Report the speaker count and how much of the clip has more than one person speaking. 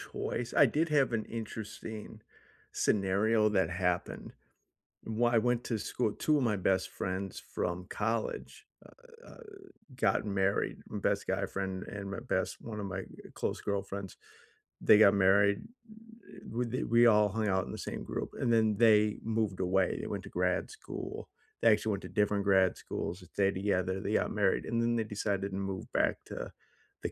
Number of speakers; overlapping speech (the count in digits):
1, no overlap